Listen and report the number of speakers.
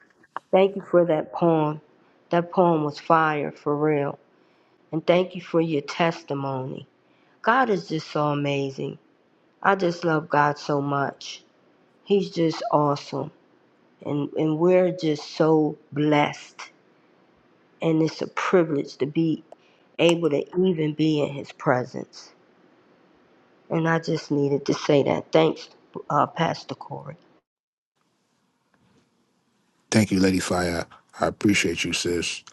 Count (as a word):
two